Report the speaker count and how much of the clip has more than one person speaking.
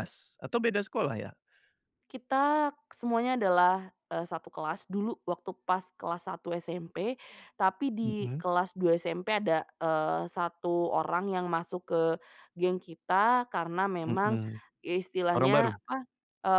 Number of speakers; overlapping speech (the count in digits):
2, about 7%